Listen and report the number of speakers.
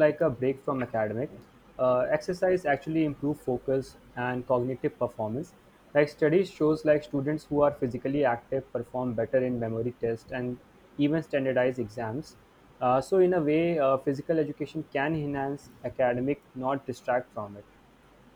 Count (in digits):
1